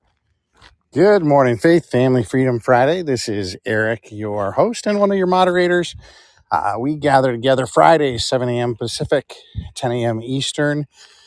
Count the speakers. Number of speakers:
1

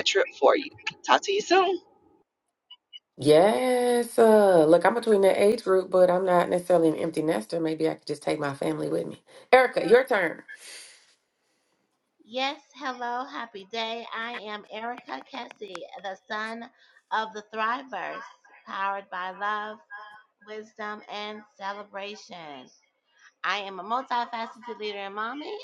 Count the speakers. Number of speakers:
3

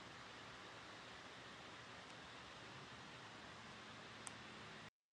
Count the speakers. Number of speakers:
0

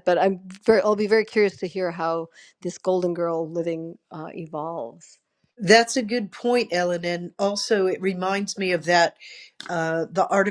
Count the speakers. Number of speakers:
2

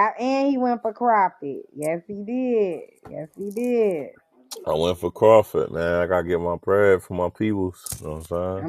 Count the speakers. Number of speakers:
2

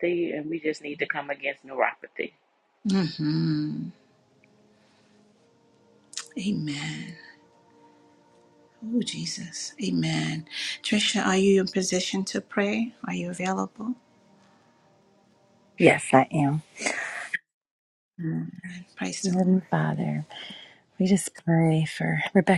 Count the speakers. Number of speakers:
3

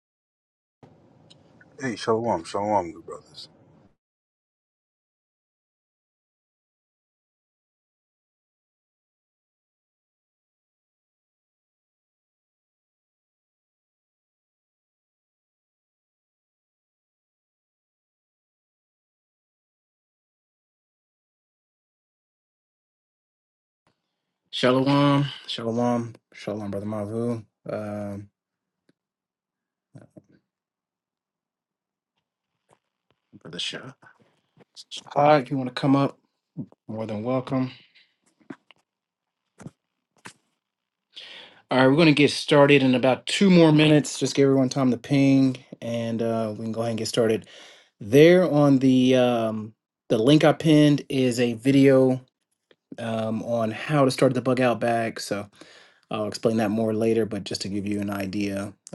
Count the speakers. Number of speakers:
2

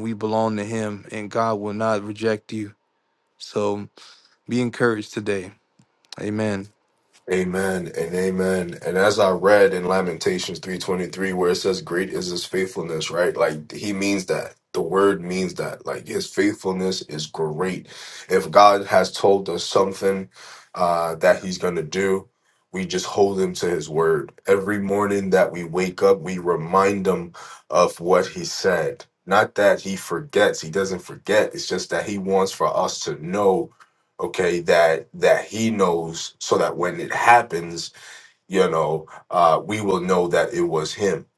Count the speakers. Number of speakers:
2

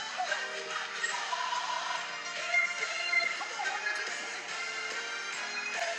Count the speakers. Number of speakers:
0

